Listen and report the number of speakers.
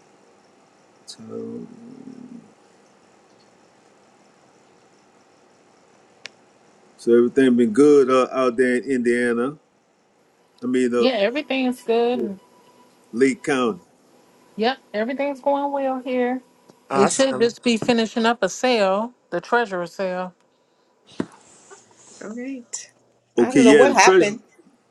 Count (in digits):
3